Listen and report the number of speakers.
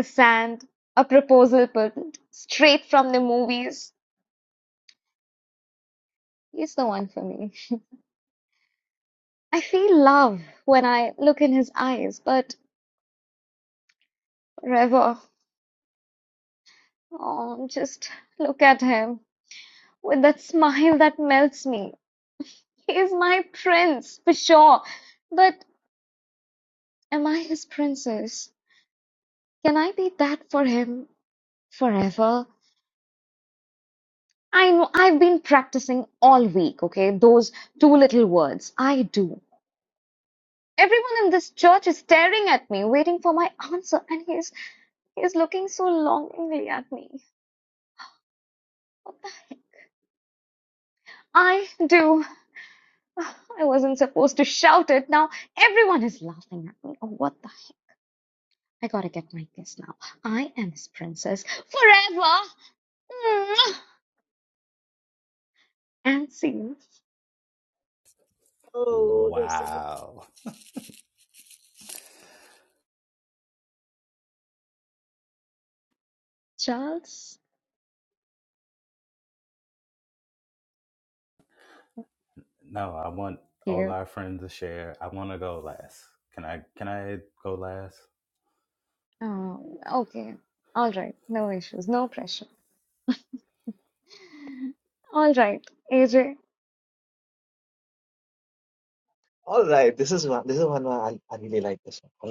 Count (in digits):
3